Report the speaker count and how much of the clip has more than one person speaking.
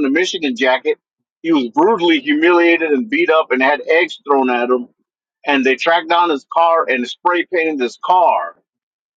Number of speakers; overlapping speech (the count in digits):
1, no overlap